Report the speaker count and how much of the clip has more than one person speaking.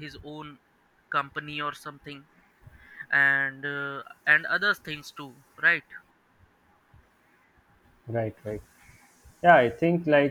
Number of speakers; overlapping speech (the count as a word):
two, no overlap